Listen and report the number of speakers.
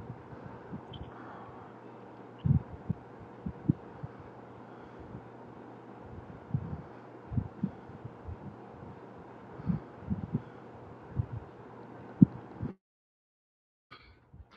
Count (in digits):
0